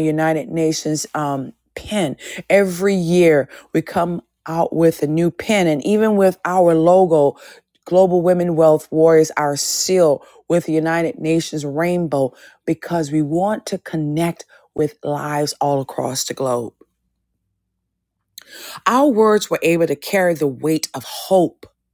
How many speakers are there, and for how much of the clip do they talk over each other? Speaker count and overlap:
1, no overlap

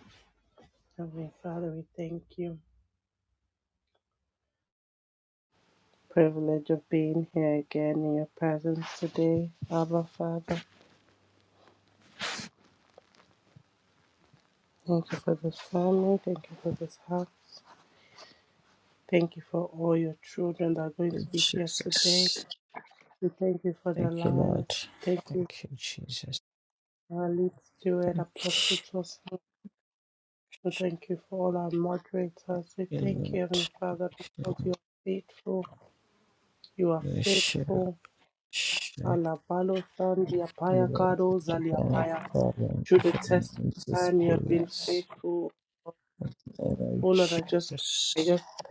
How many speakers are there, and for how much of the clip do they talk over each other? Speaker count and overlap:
2, about 14%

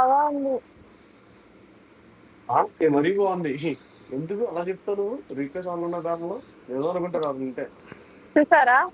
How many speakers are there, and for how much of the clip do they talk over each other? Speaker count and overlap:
2, no overlap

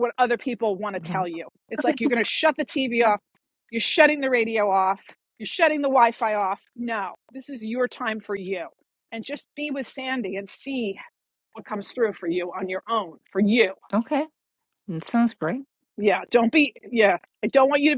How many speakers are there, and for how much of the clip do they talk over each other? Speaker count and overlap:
2, about 2%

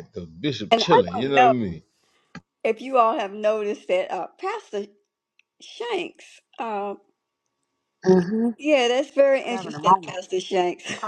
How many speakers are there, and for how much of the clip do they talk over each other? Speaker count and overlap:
3, about 12%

